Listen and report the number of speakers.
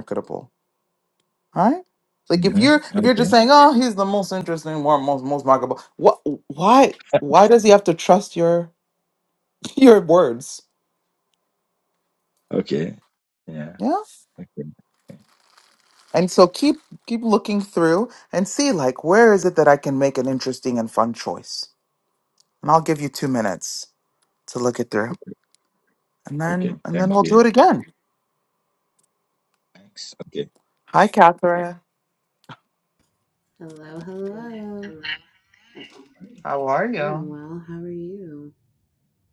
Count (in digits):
3